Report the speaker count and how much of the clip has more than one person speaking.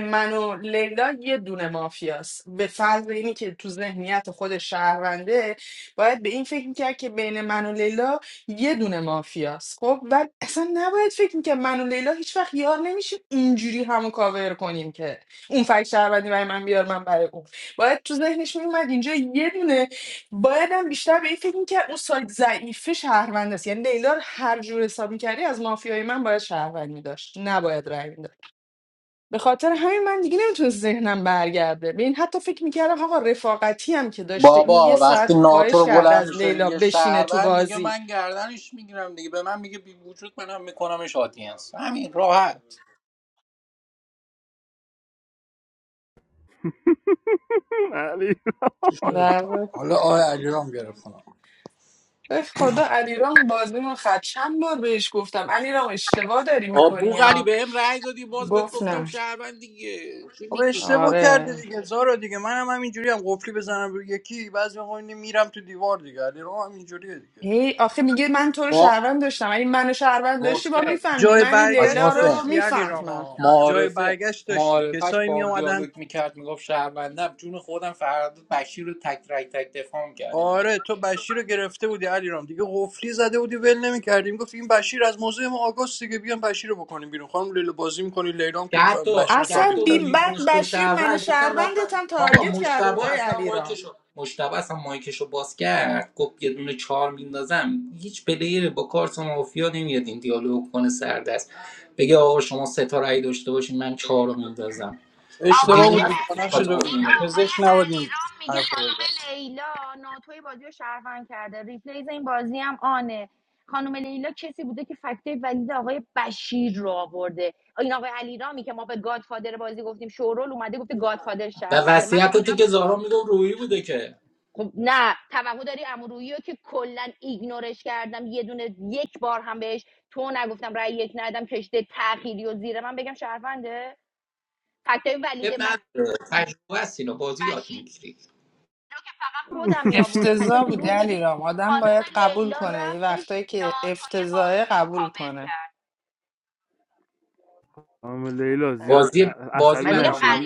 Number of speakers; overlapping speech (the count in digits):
5, about 19%